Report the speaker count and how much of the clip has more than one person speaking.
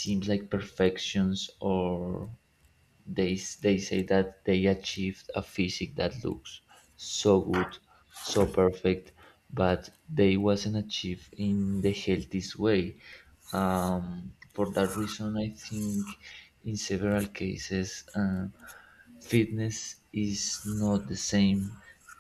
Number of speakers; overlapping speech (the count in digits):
1, no overlap